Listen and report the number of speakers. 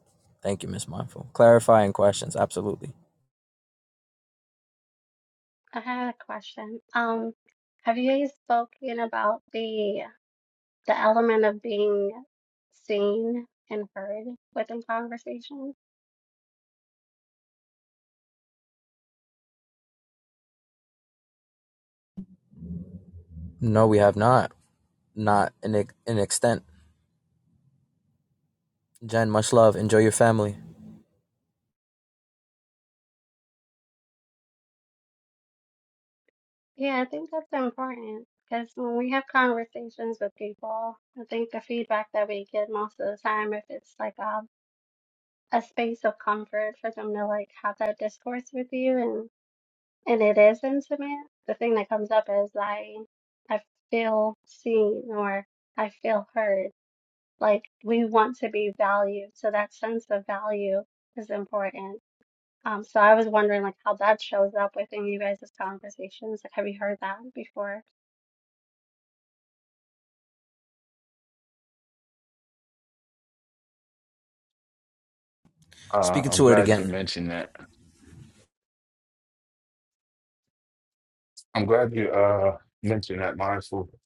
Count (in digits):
3